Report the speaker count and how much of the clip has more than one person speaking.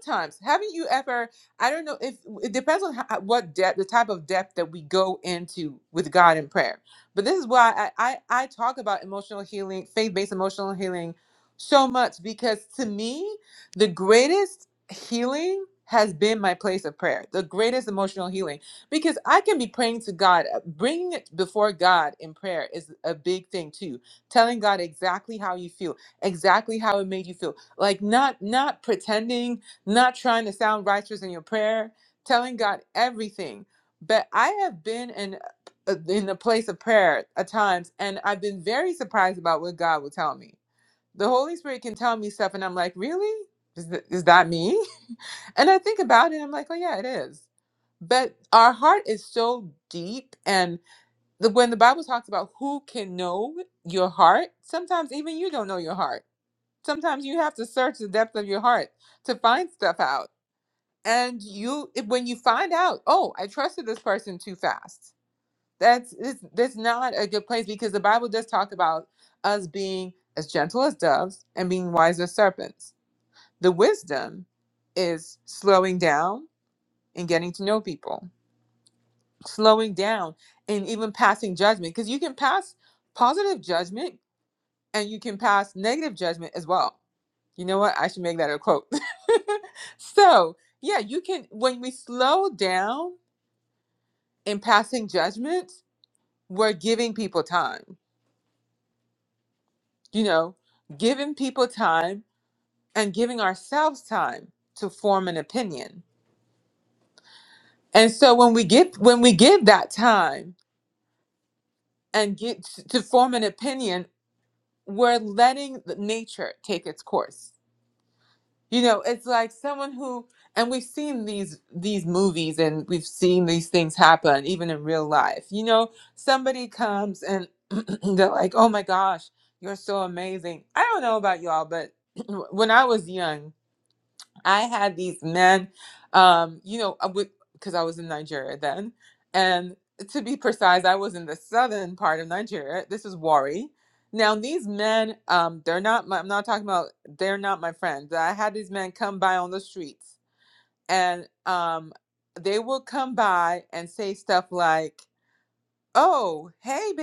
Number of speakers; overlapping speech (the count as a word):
one, no overlap